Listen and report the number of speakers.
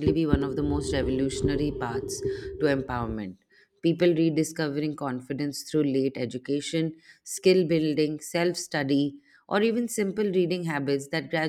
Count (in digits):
1